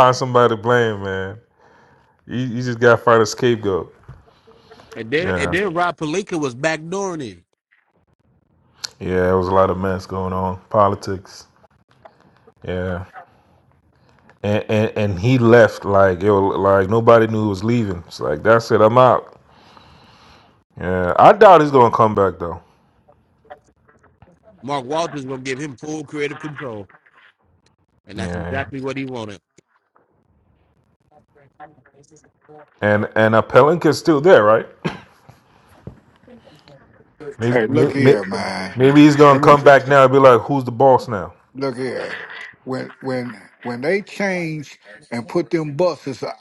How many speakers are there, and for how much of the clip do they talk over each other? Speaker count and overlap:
3, about 4%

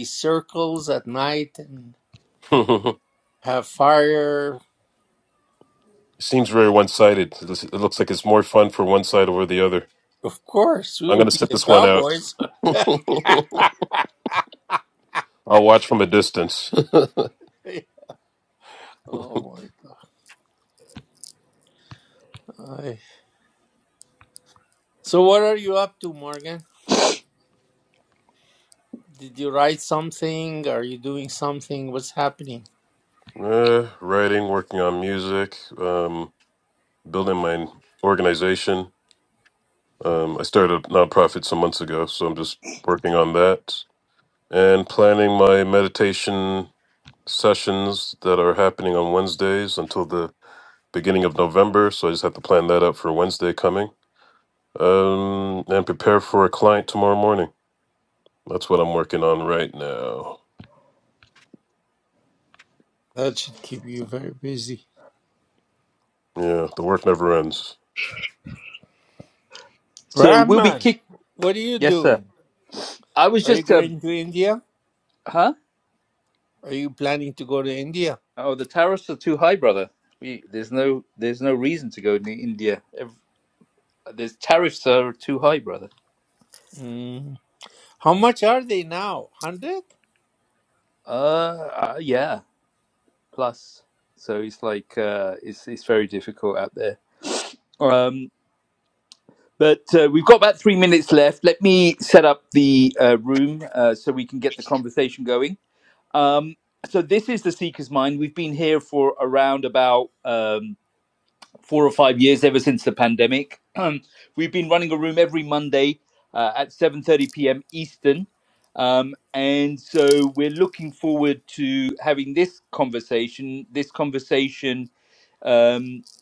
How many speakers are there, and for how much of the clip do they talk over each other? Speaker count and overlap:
3, about 2%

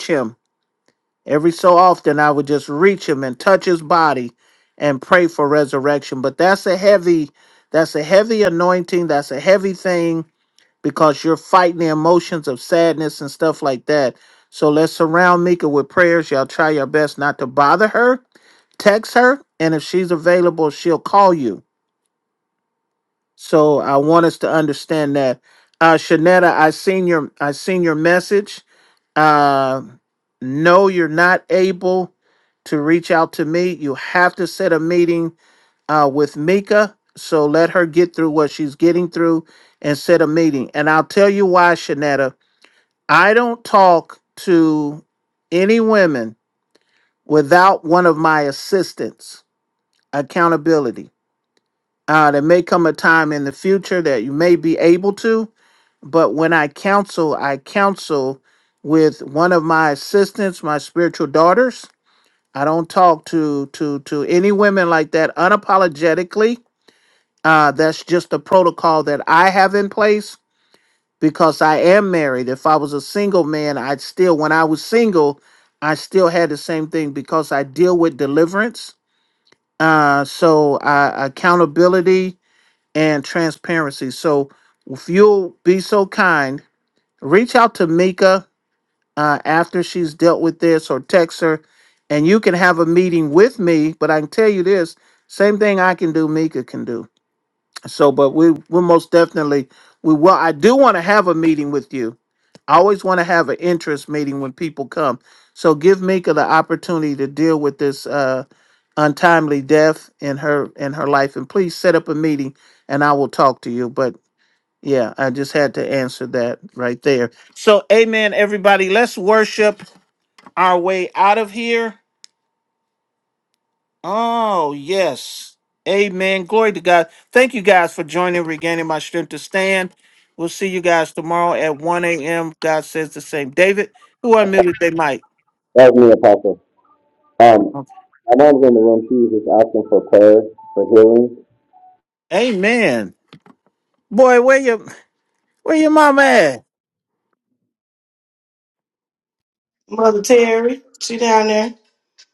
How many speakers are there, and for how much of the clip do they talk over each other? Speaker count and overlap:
3, no overlap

